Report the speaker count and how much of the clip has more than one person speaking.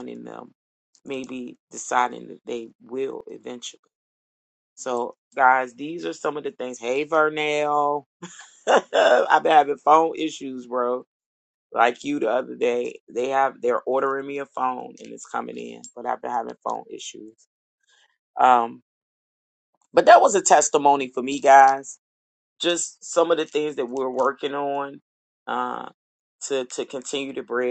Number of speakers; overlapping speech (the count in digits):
1, no overlap